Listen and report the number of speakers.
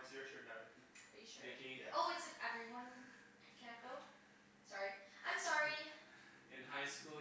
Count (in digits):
3